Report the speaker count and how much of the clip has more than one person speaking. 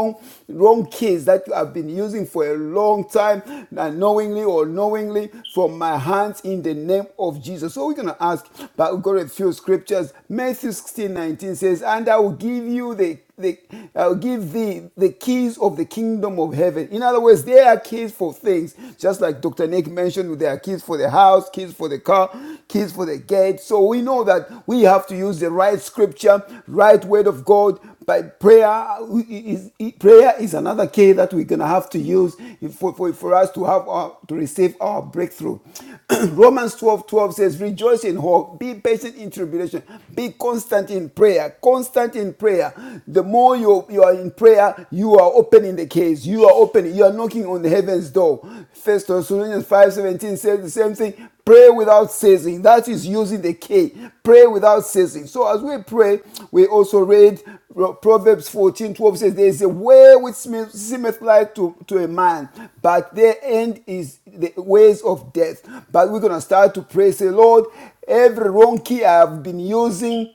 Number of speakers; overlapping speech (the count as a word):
one, no overlap